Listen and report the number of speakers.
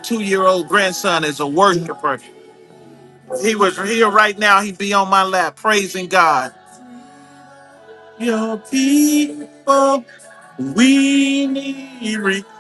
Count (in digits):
1